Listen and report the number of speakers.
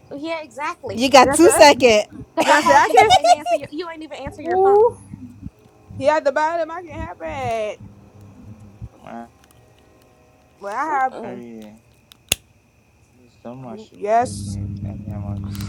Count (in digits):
4